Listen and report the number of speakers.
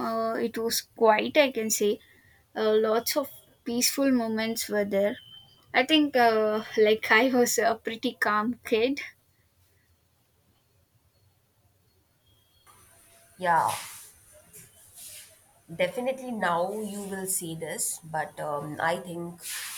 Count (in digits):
2